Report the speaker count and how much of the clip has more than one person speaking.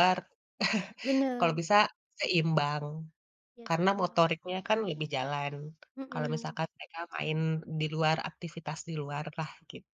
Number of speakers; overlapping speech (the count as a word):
two, about 5%